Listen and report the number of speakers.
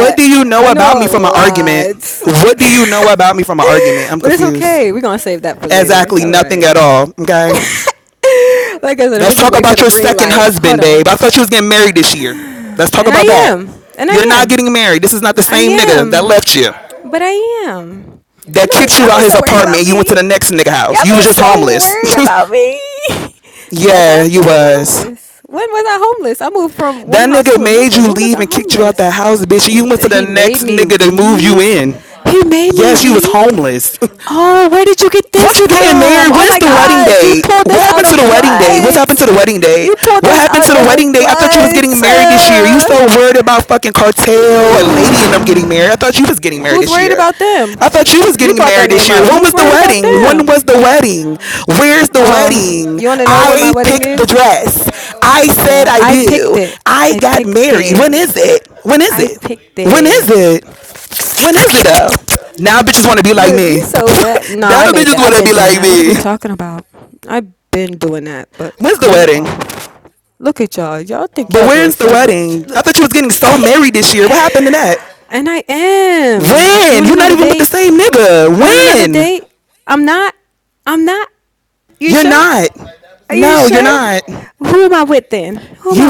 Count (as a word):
two